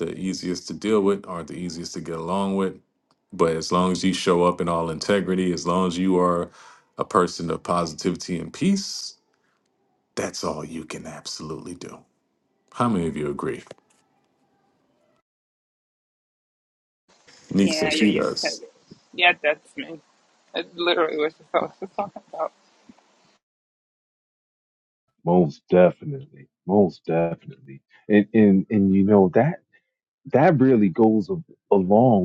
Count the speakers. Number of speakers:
three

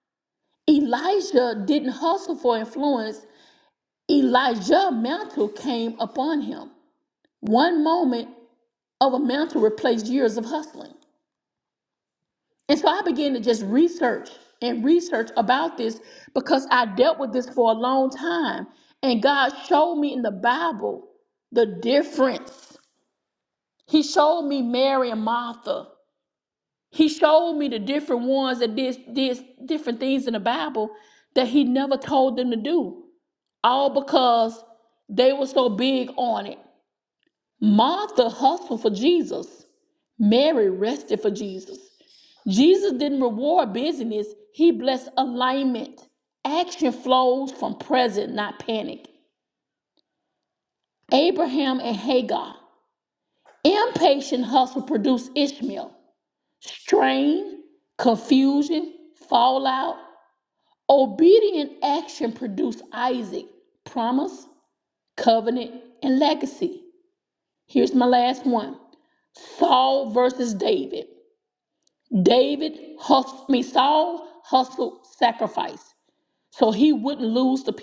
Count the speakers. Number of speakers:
one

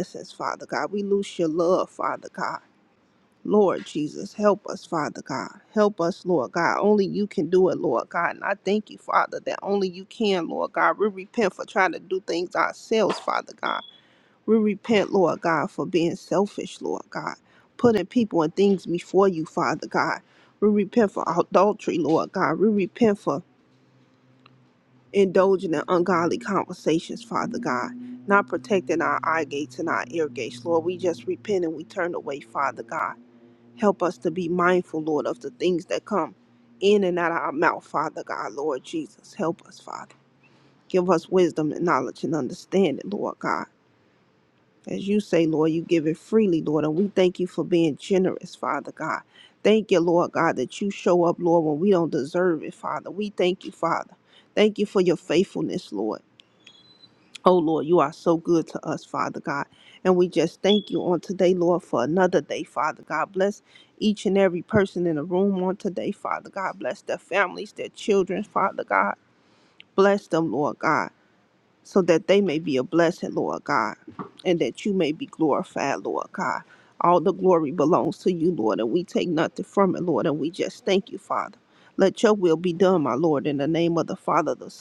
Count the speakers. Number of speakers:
one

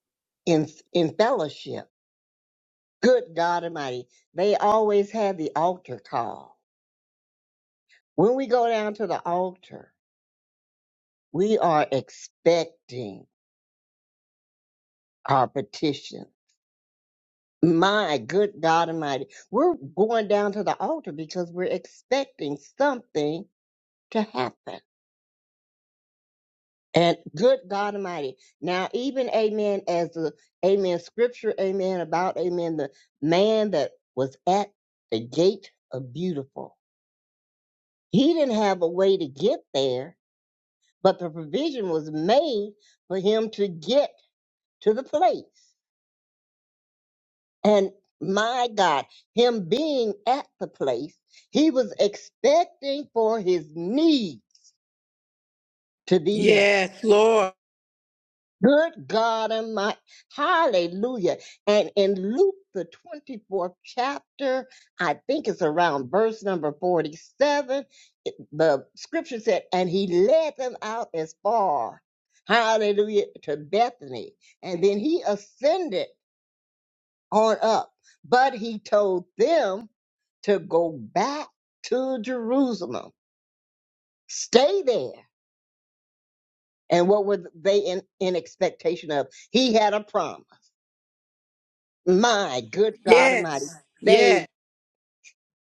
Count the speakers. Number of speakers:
two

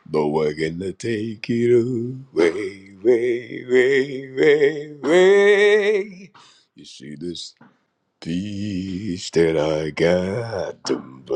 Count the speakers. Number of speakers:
one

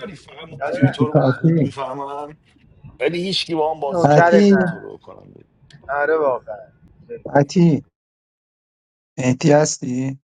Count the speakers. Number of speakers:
three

